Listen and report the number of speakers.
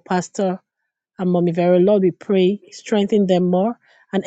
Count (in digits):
1